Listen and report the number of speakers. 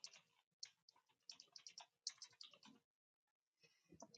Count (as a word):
zero